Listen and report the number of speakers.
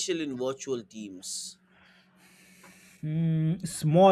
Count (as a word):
two